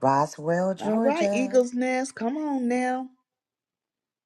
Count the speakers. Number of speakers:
two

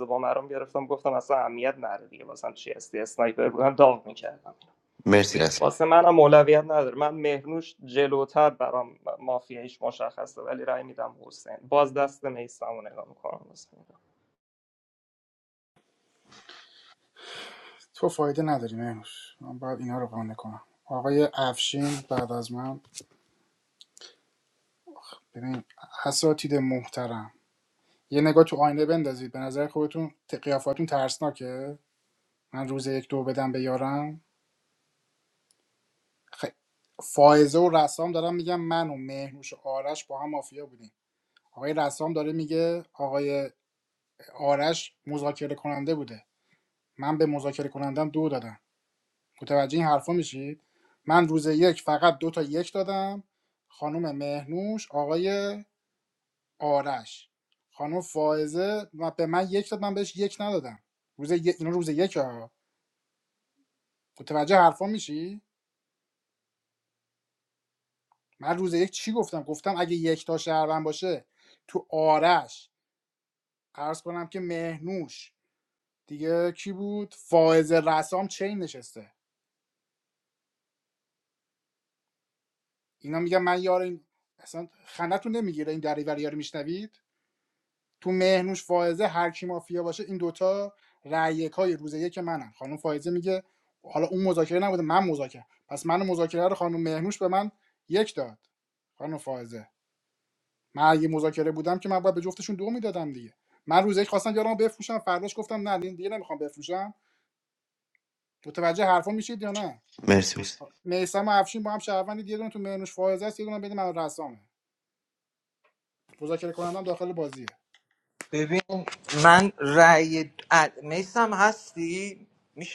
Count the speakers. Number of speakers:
four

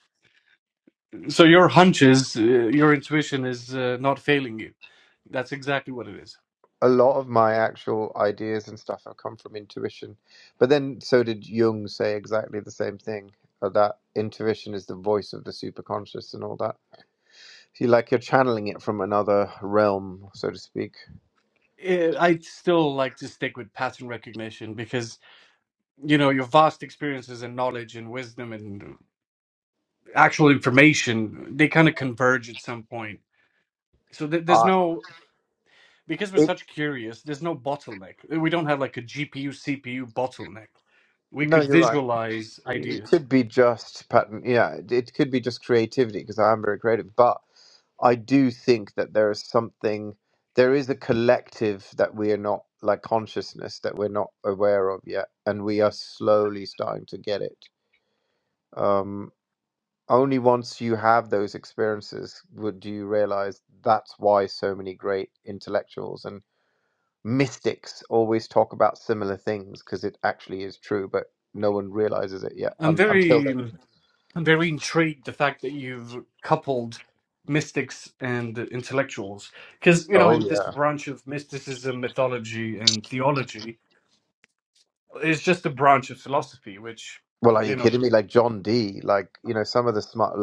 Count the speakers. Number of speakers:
two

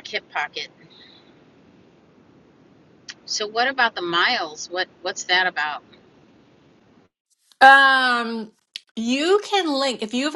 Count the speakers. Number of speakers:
two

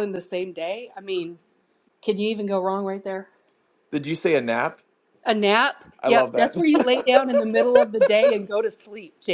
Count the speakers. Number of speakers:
two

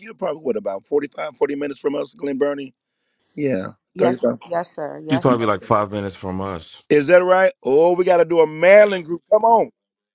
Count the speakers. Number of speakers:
three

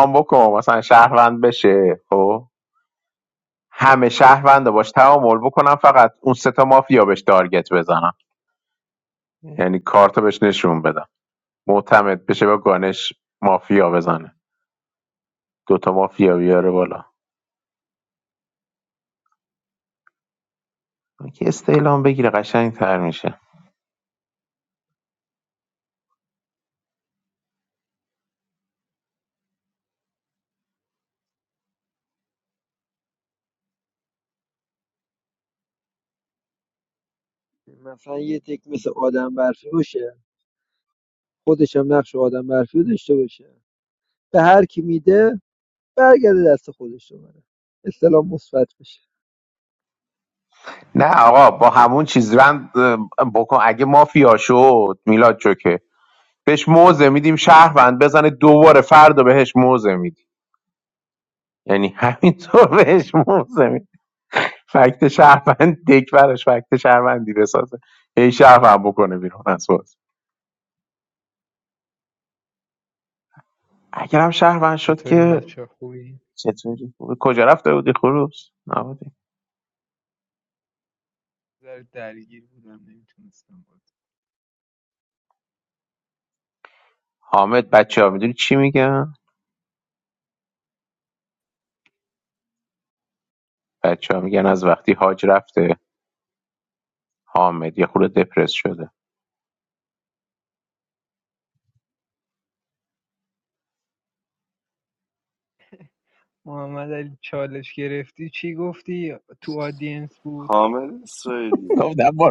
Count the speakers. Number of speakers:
four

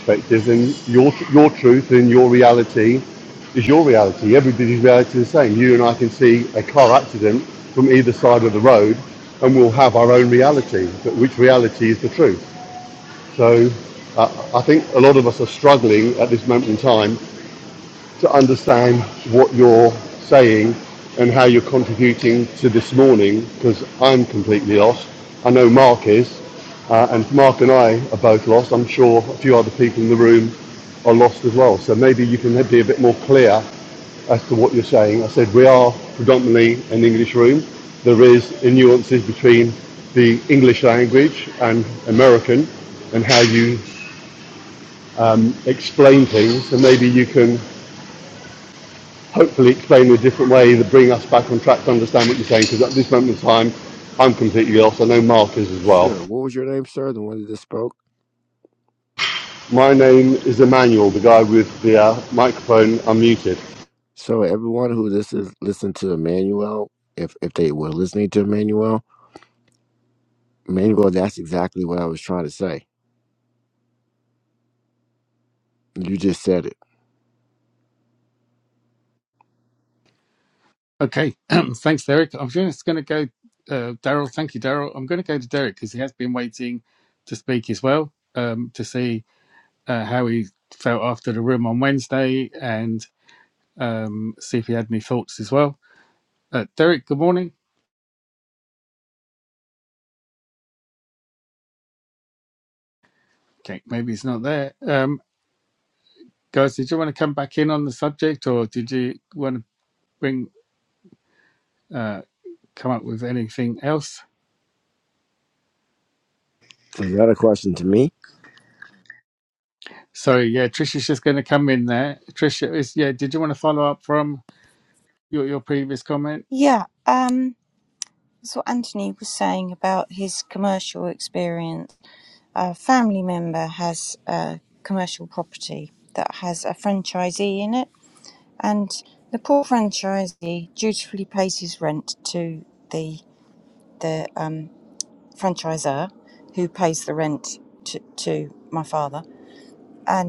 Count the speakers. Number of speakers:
four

